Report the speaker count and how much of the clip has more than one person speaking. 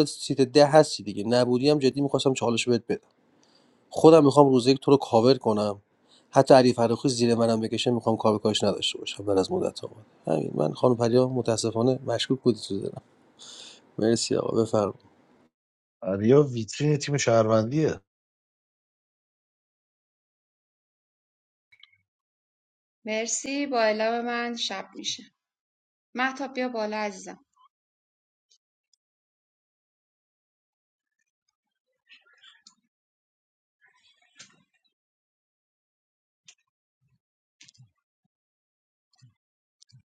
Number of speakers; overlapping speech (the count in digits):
3, no overlap